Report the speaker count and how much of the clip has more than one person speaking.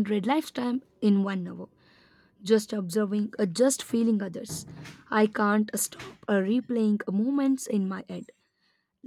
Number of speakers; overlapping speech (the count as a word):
one, no overlap